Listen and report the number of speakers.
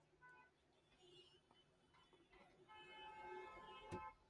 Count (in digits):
0